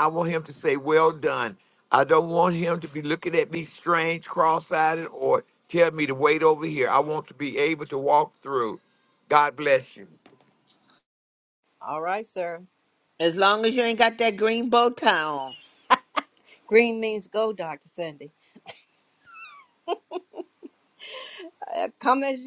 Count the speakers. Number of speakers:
3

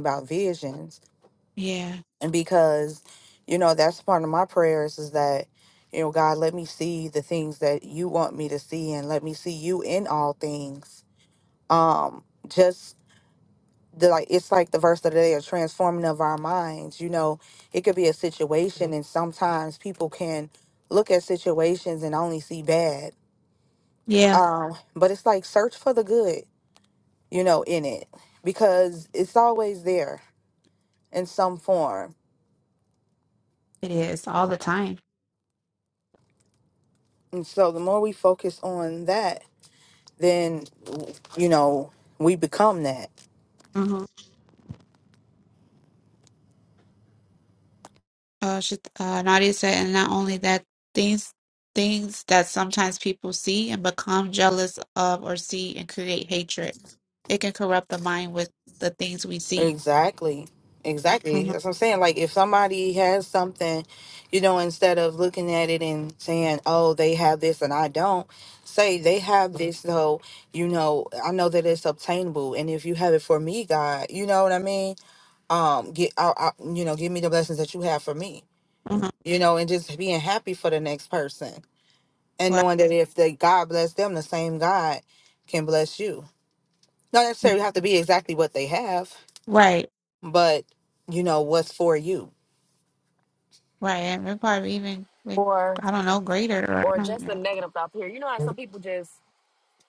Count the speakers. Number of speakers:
3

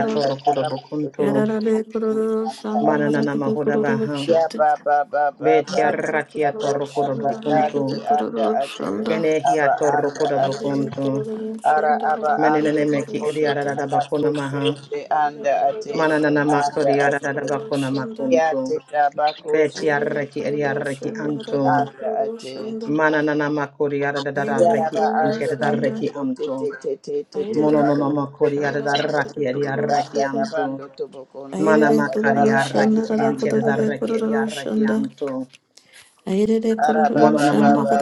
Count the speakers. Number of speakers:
3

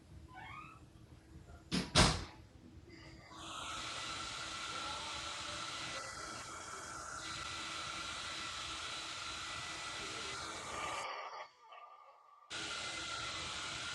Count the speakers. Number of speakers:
0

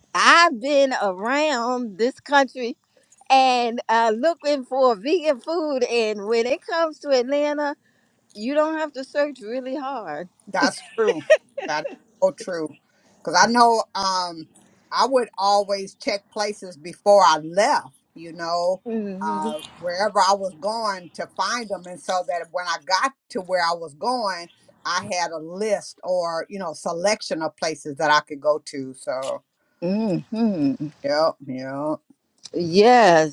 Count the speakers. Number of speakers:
2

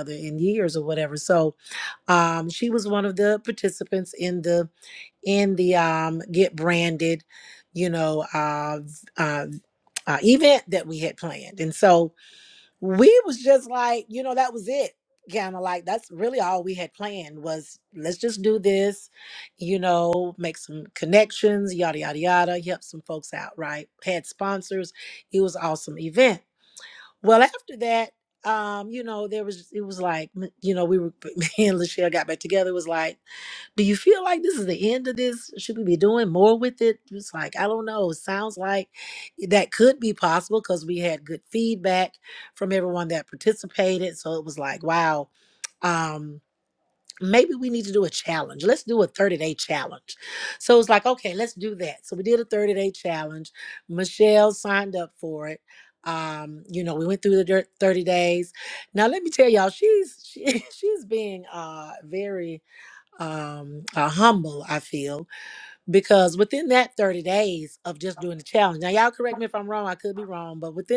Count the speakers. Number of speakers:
1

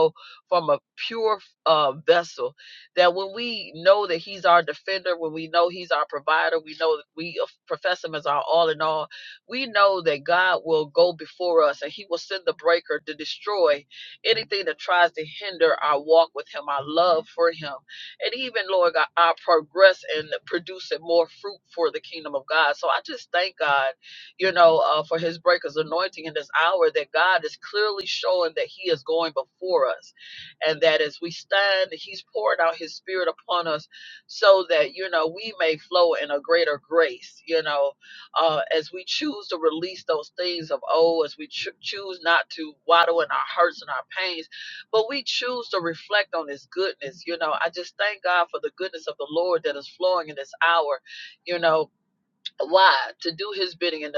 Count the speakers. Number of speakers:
1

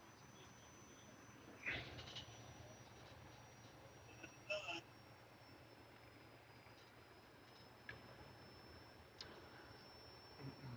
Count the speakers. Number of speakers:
0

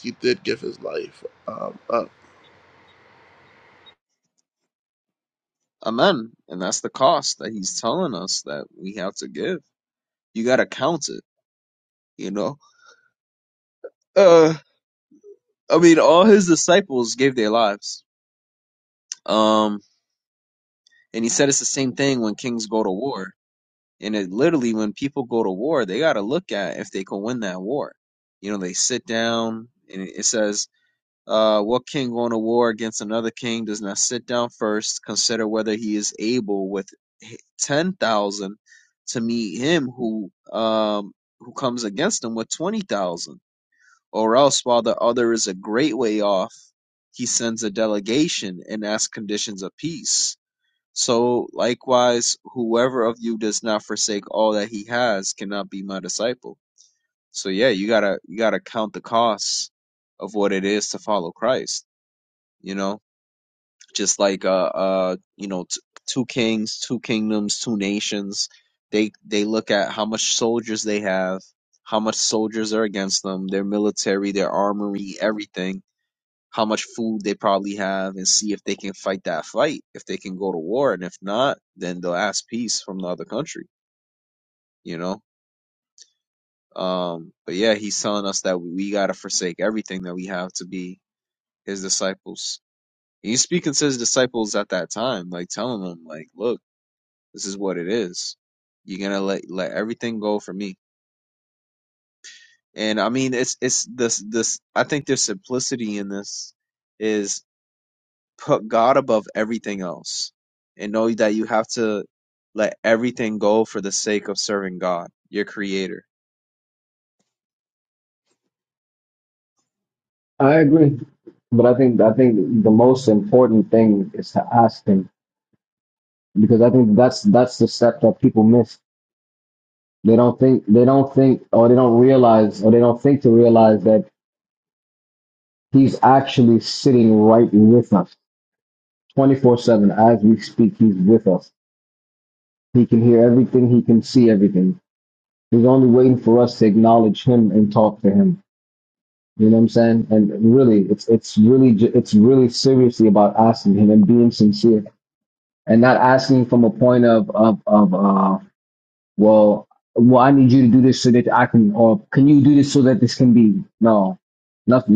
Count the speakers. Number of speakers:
3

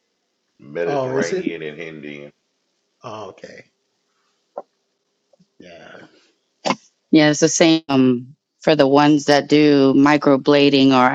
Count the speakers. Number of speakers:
3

